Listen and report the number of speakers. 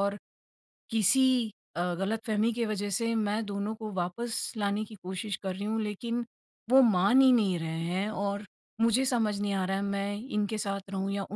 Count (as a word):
one